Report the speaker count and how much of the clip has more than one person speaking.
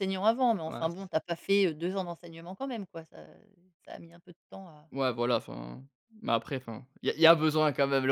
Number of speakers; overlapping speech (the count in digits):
2, about 2%